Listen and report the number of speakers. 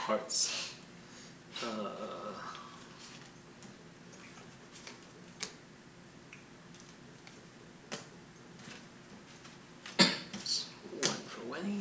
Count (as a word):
one